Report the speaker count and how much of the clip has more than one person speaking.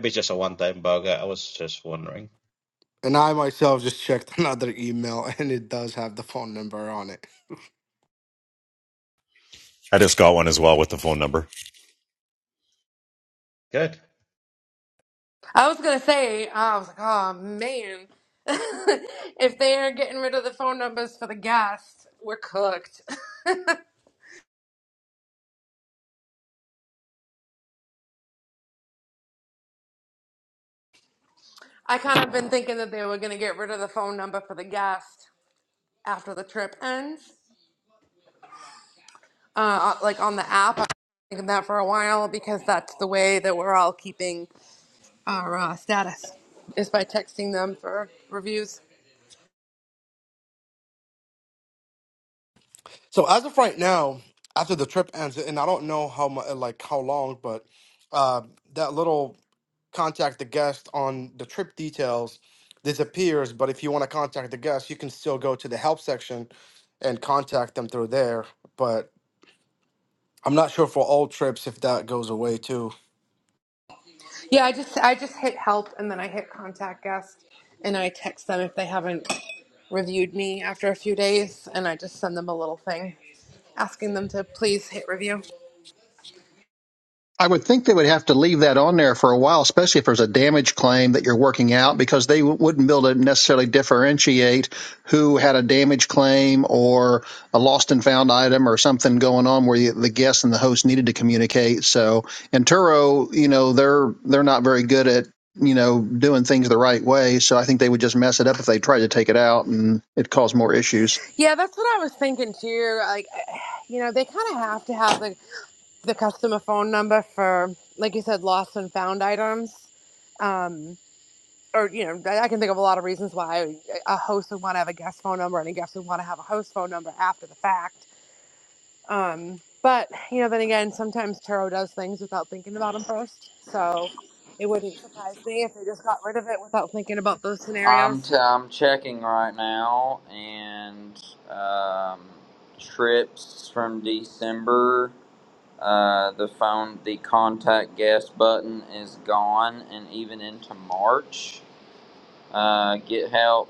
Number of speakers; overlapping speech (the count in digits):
6, under 1%